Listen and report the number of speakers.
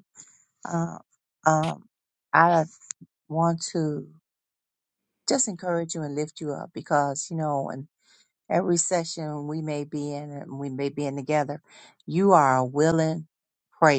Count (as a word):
one